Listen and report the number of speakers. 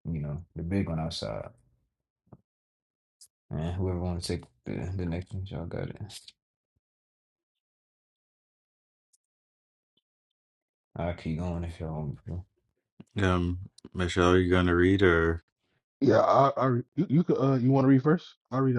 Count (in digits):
3